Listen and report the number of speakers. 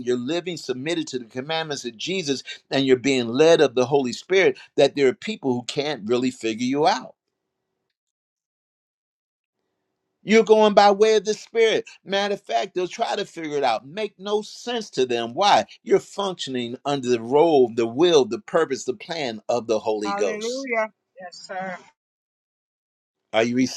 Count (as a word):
two